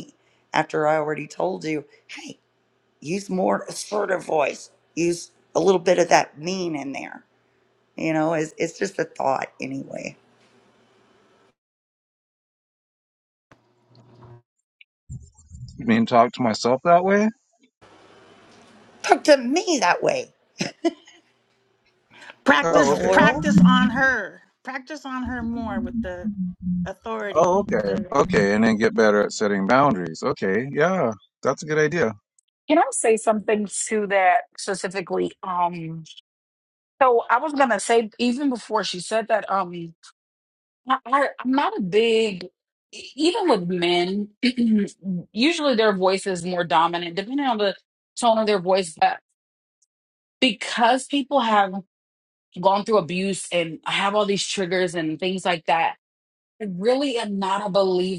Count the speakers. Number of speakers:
4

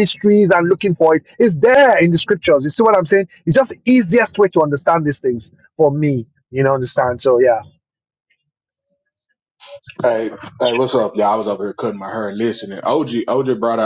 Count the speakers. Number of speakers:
2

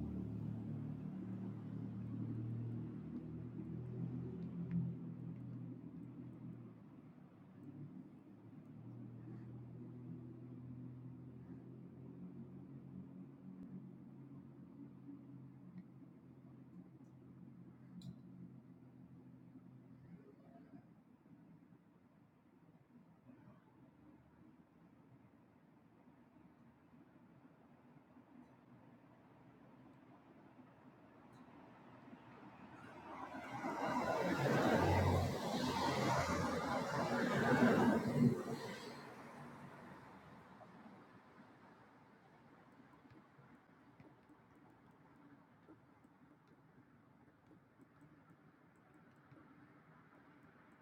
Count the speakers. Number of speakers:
0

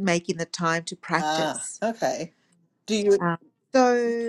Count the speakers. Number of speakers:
2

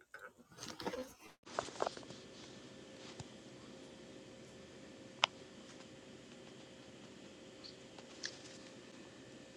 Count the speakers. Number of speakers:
0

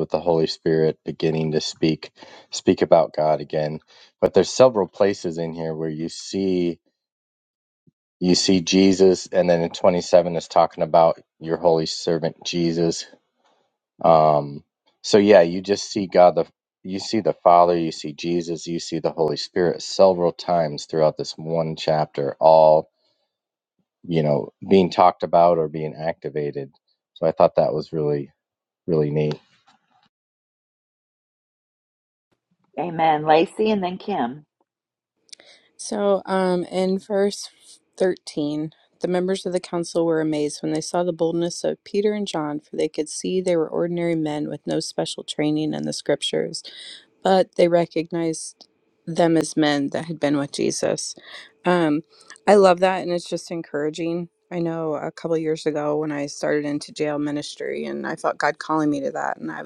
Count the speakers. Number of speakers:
3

